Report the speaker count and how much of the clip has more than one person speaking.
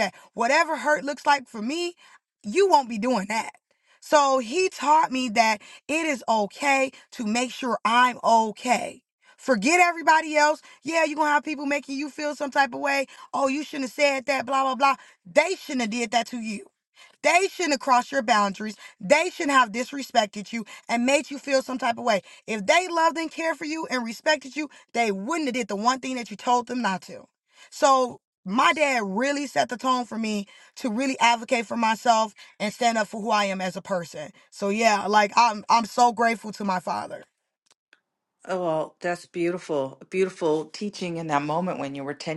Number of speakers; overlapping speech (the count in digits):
2, no overlap